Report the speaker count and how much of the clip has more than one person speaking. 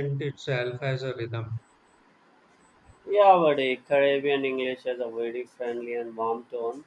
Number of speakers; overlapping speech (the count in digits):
2, no overlap